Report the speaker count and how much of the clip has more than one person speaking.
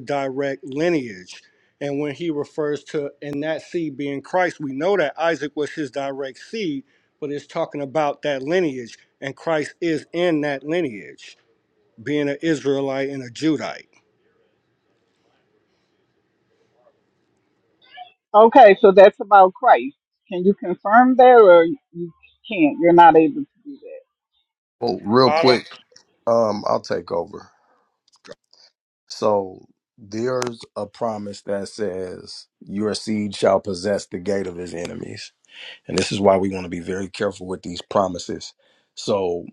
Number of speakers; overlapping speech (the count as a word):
three, about 1%